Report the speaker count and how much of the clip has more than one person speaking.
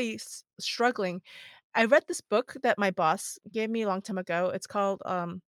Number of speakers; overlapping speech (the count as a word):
one, no overlap